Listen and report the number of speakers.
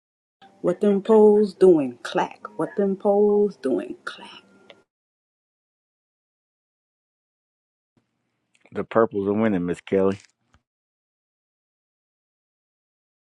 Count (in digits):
2